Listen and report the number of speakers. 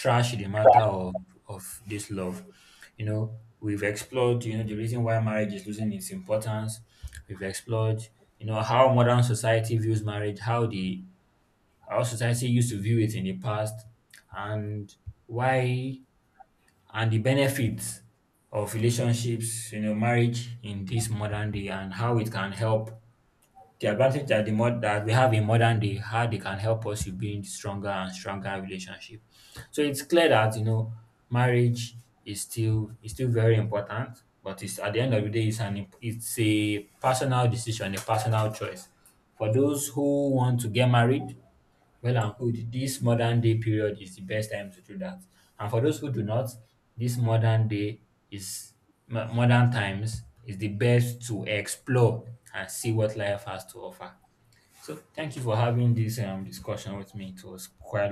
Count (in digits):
1